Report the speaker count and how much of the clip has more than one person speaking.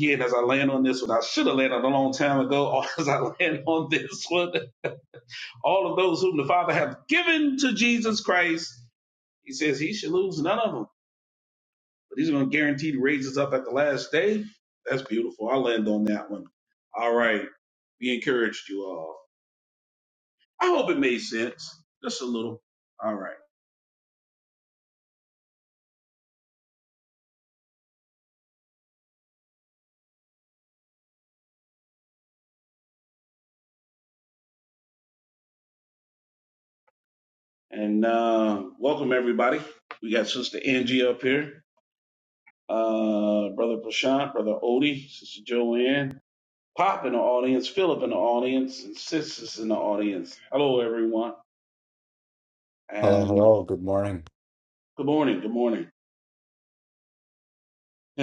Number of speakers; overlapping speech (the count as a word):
two, no overlap